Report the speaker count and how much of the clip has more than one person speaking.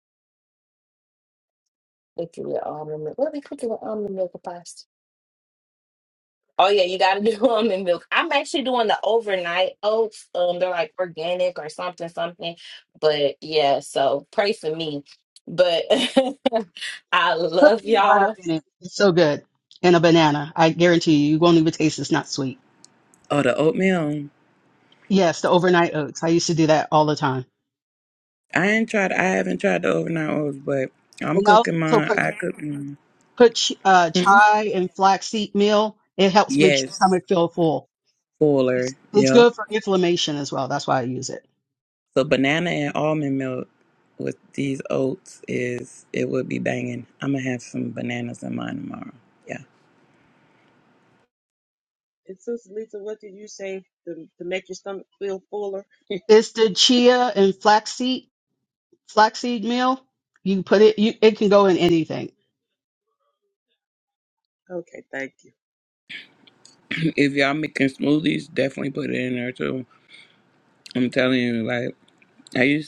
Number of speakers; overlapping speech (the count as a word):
four, about 4%